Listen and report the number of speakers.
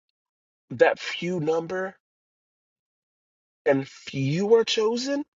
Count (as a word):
one